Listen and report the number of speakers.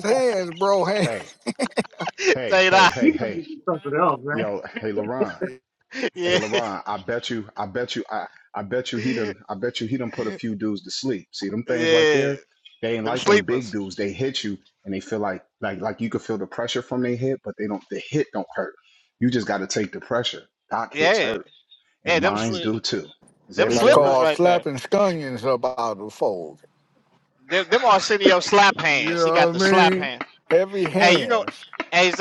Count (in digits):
4